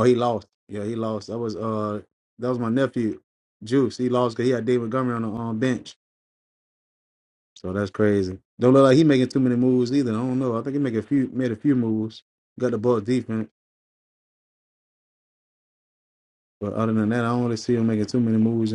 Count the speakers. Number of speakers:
1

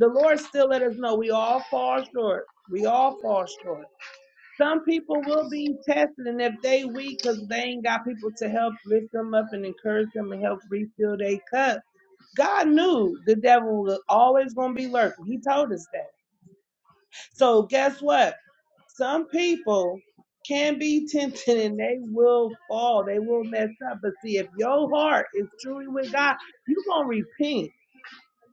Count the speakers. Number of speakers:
1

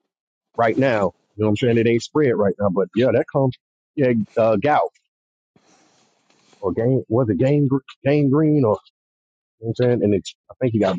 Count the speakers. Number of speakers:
1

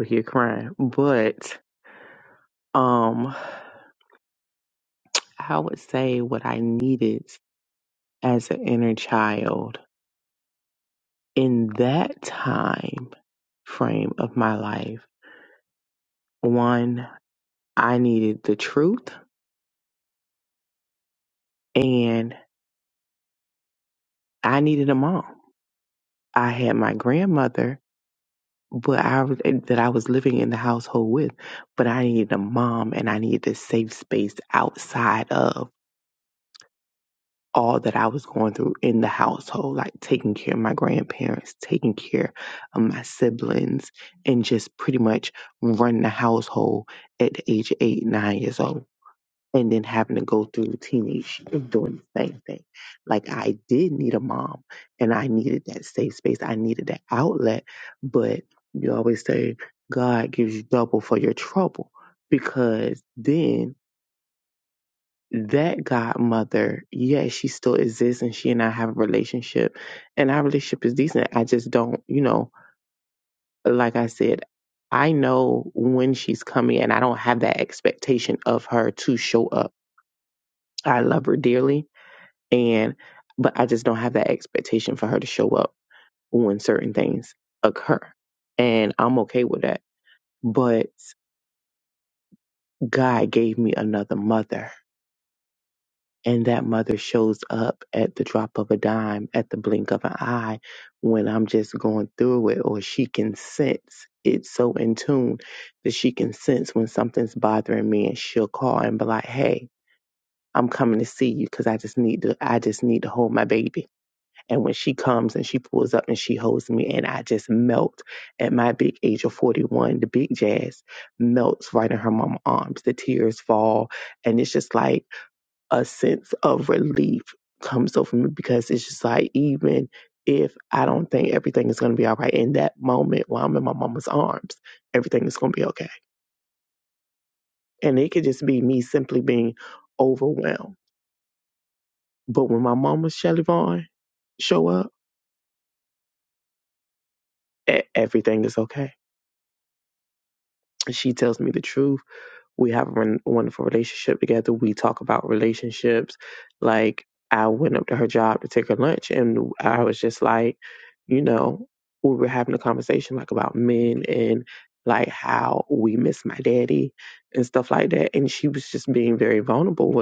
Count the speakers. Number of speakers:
1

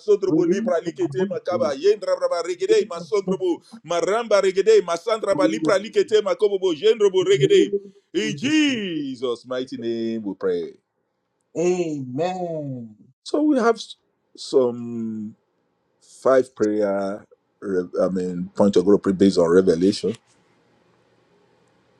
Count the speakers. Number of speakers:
2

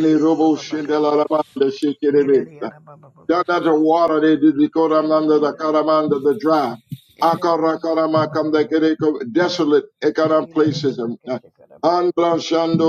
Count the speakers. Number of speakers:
2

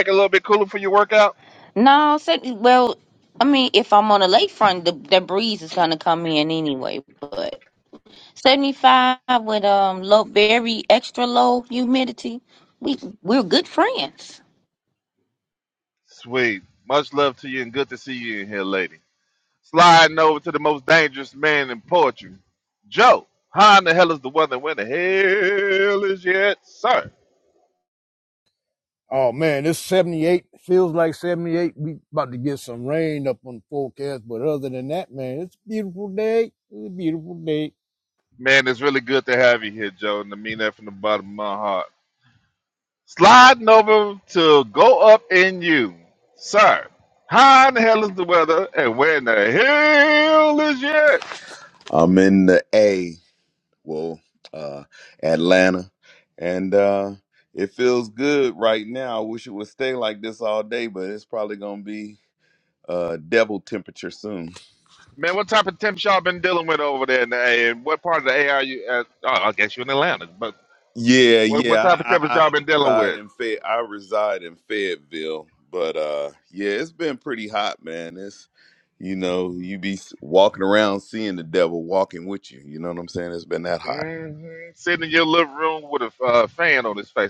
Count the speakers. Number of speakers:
4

